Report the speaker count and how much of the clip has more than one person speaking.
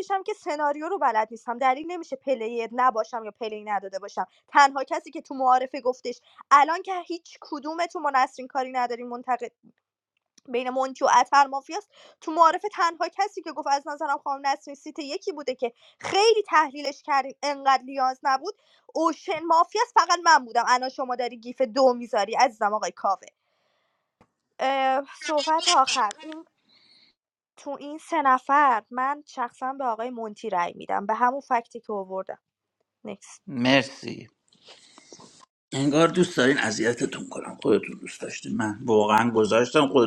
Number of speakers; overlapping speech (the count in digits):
2, no overlap